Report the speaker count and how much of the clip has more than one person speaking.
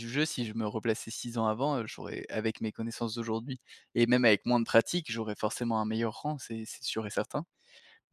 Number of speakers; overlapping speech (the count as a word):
one, no overlap